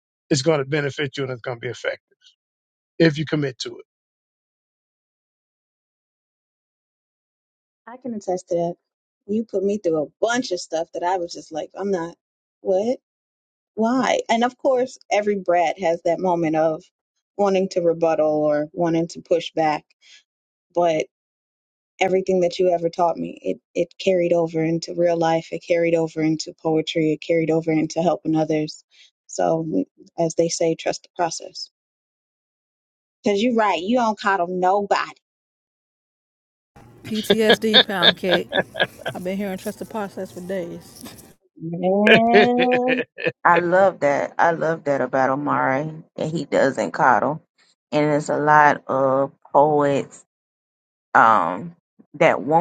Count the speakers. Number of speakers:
four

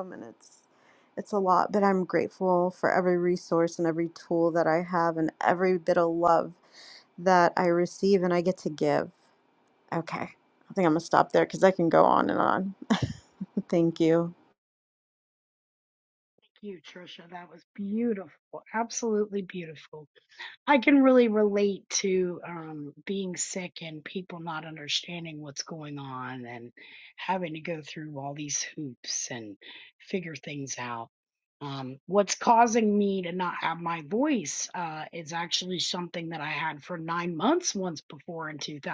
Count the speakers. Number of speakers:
two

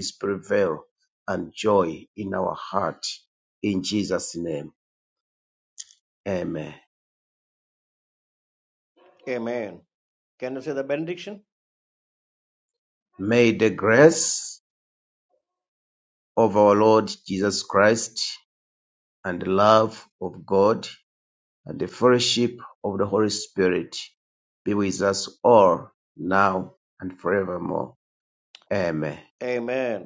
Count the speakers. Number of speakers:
two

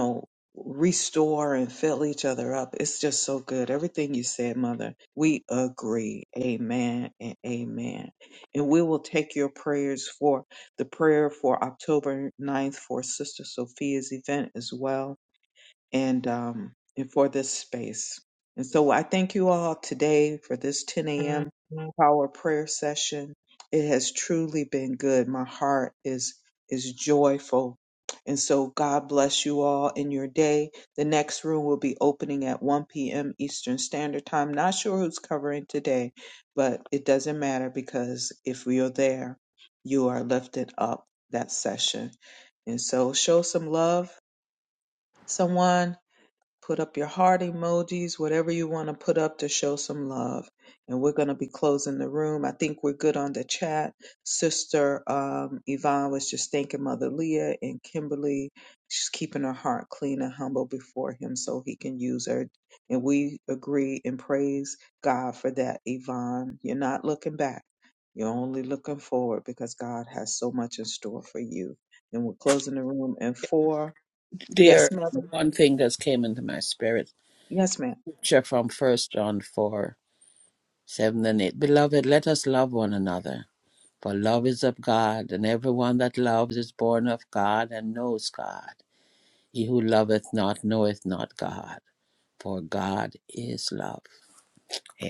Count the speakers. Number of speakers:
two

